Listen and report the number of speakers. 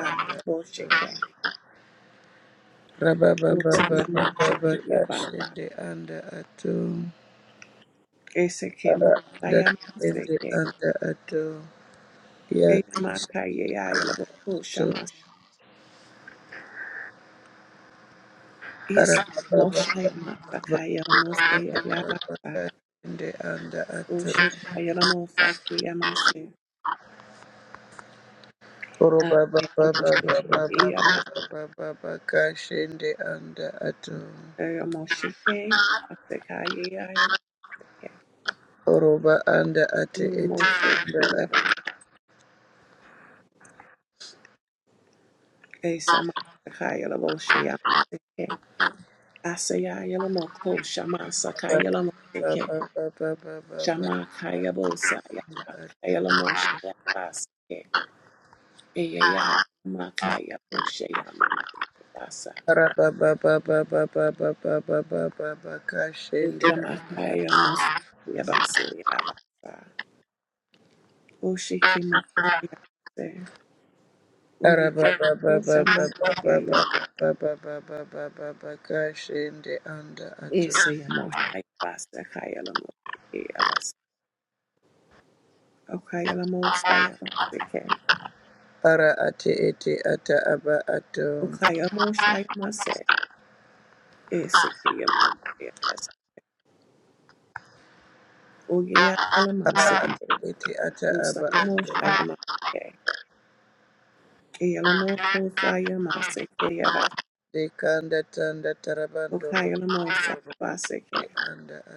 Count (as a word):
two